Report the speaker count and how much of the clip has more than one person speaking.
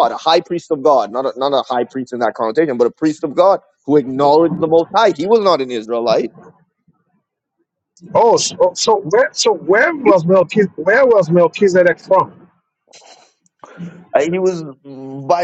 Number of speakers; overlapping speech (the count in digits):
2, no overlap